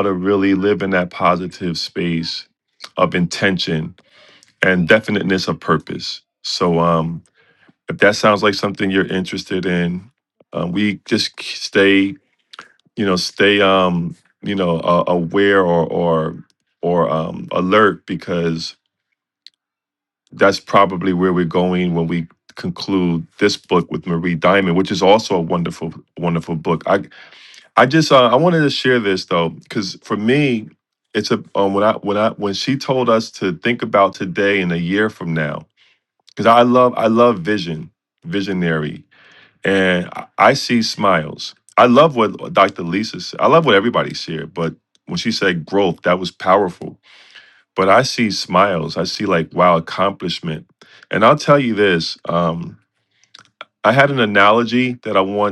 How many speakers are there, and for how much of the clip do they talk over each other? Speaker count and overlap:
1, no overlap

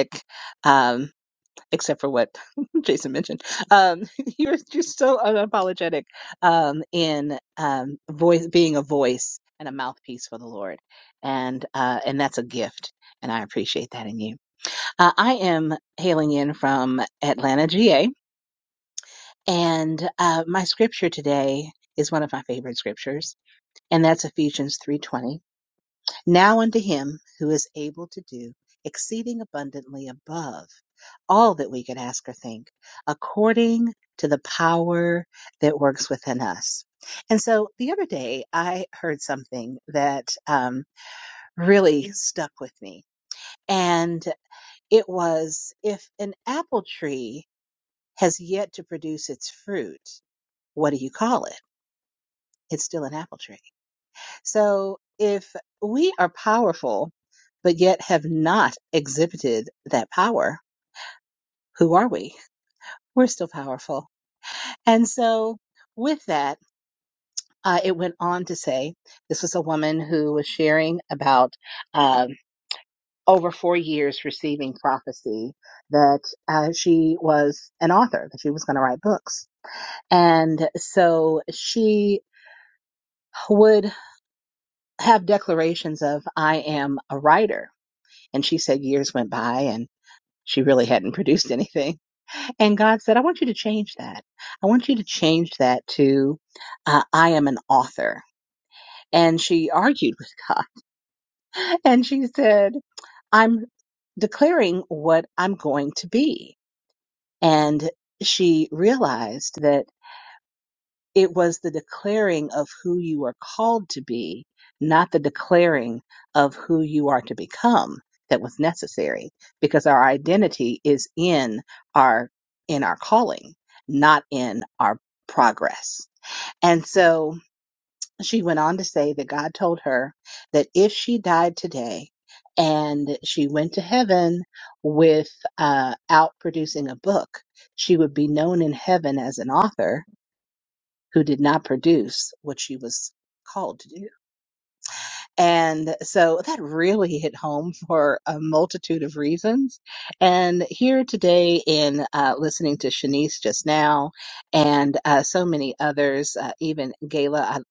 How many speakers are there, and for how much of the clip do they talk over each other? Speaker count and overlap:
1, no overlap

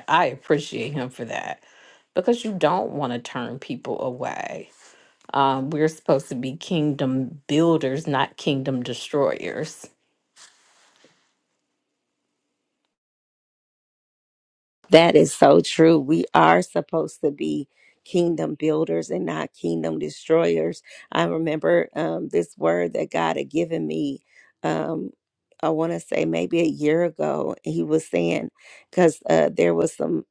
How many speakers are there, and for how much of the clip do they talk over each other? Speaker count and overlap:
2, no overlap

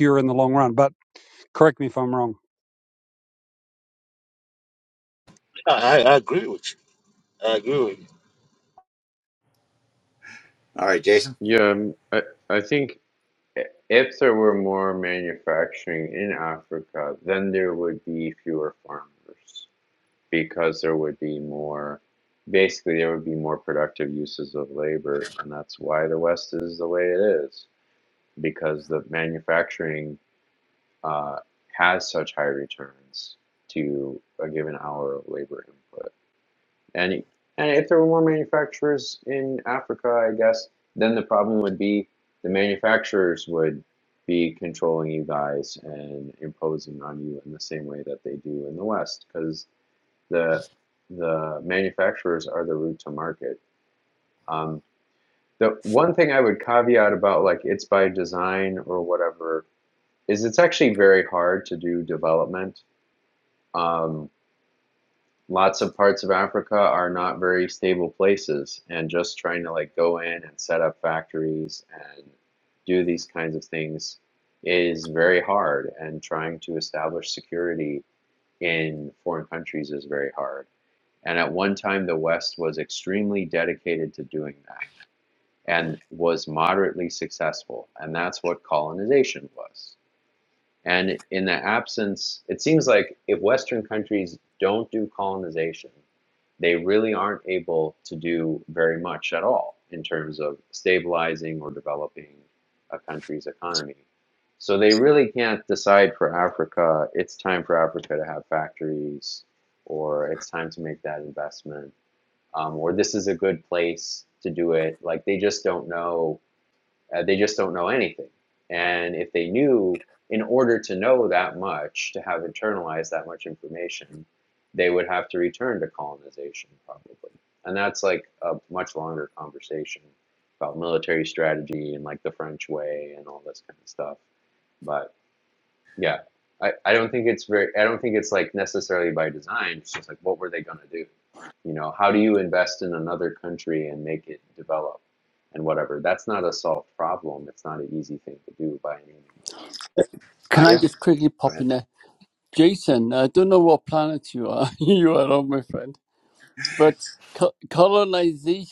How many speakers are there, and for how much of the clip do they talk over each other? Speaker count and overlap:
5, under 1%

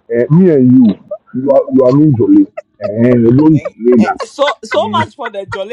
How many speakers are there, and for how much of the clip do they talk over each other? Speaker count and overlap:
2, about 10%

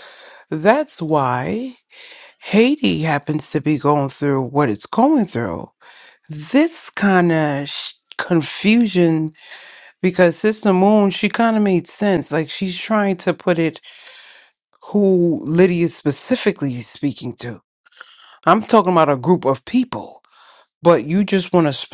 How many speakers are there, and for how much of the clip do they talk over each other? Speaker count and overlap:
1, no overlap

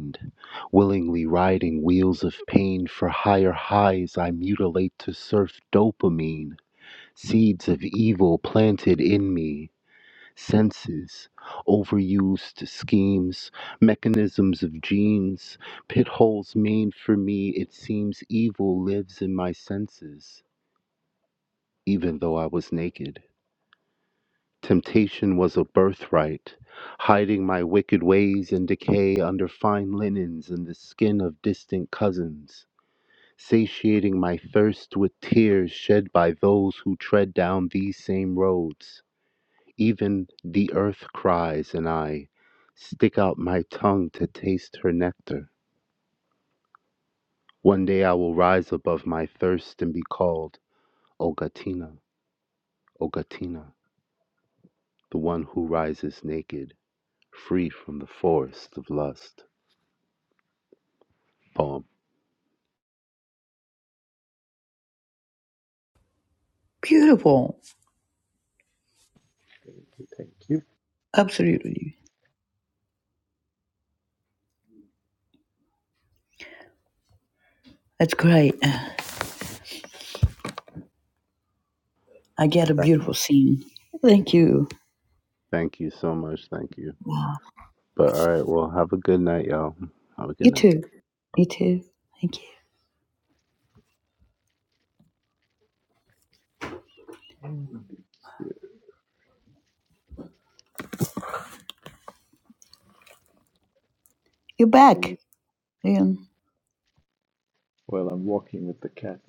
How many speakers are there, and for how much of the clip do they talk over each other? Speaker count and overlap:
3, under 1%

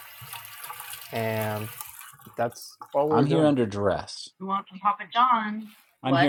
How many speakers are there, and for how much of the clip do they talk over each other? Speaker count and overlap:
3, about 10%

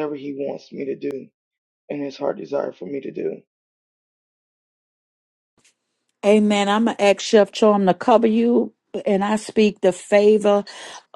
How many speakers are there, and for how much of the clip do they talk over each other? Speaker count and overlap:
2, no overlap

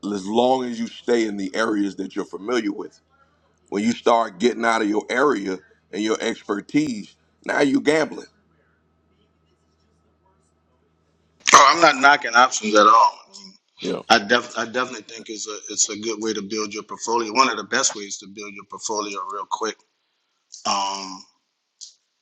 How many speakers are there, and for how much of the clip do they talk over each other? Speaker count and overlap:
2, no overlap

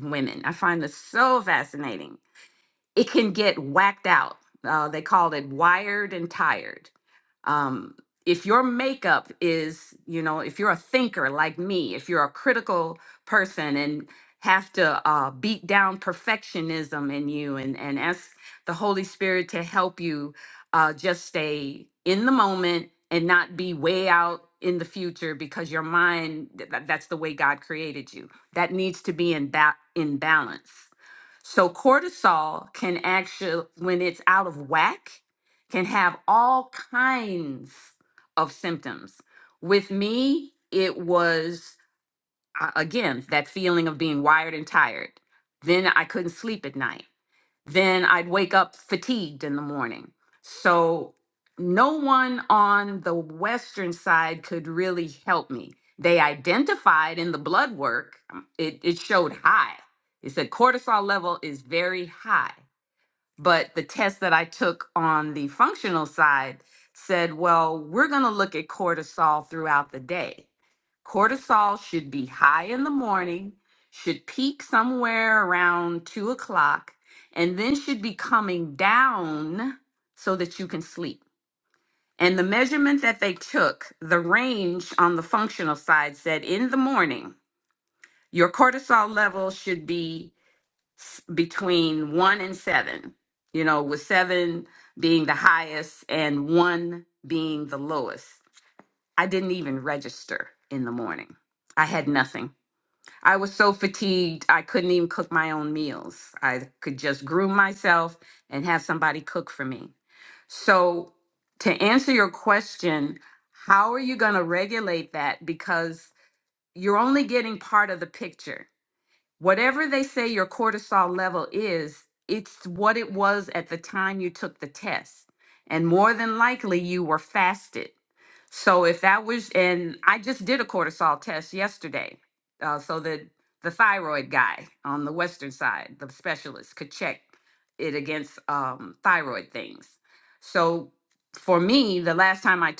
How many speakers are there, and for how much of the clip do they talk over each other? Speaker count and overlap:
1, no overlap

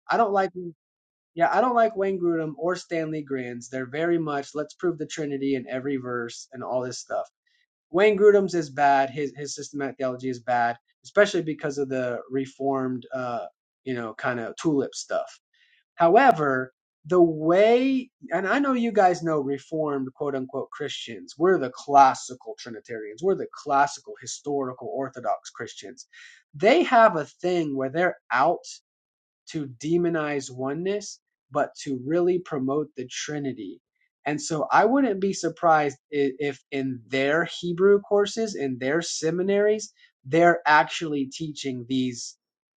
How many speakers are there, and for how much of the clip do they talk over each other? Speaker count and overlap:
1, no overlap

